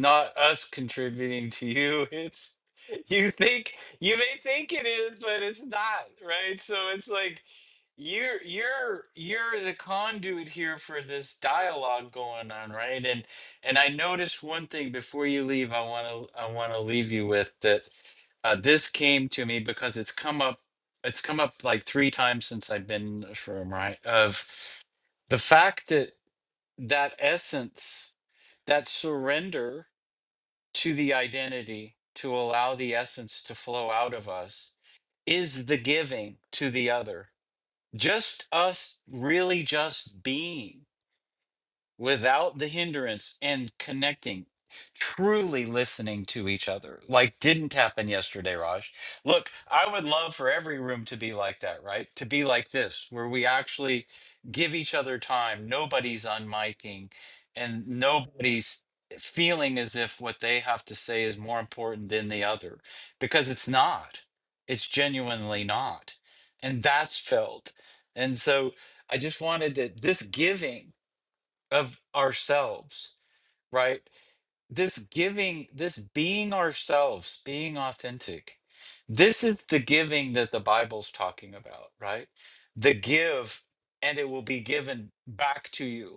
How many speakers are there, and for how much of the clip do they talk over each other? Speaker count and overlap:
one, no overlap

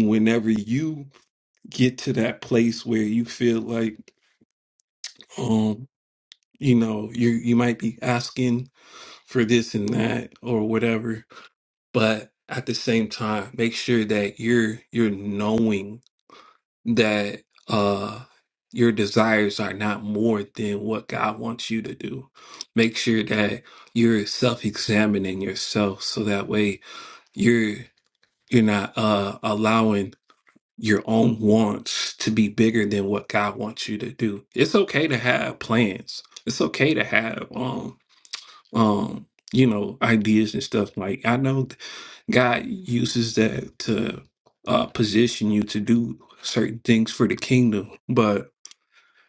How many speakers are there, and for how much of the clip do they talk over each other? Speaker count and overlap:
one, no overlap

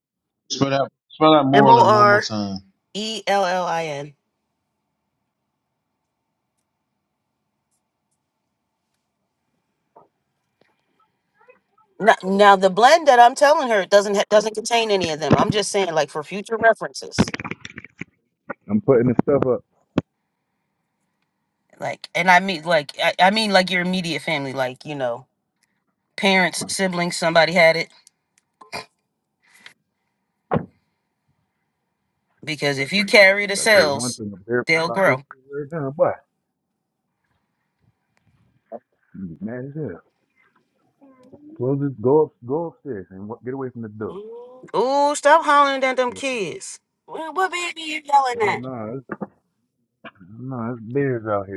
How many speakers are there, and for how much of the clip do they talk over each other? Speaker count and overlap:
three, about 4%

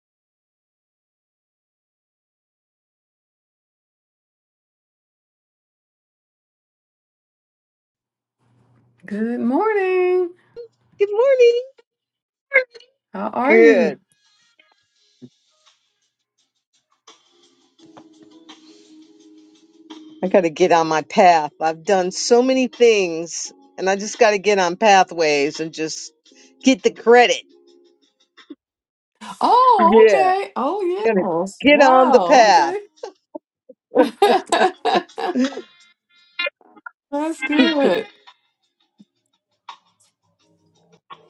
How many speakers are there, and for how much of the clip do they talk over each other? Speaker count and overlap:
two, about 6%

